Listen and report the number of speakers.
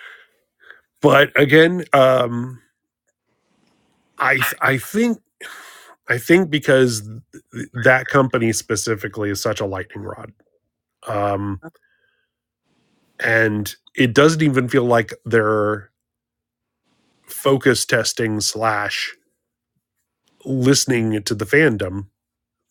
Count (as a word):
one